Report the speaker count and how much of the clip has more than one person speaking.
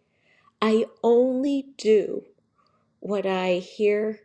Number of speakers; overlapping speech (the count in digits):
1, no overlap